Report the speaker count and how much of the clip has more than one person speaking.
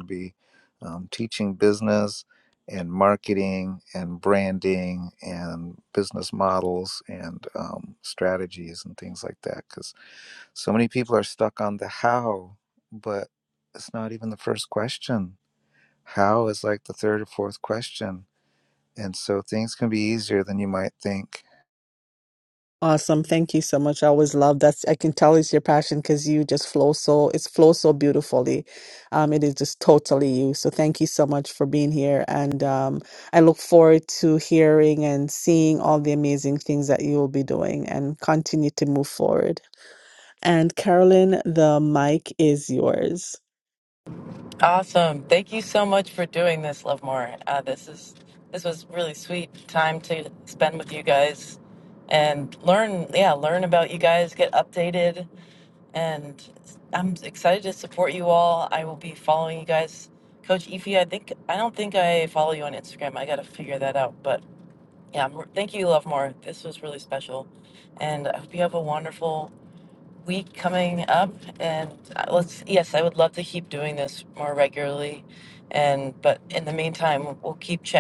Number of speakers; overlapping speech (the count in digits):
3, no overlap